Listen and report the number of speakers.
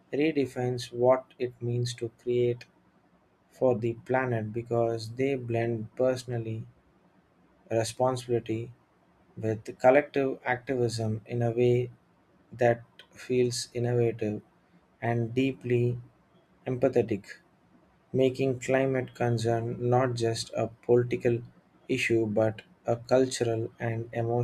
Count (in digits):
1